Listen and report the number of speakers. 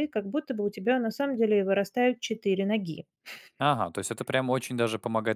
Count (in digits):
2